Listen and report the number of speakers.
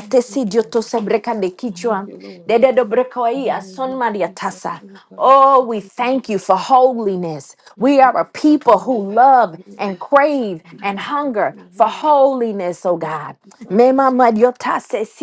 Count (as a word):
two